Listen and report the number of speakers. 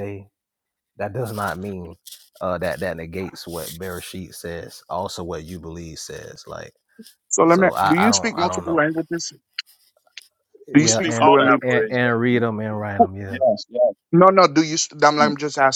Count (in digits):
3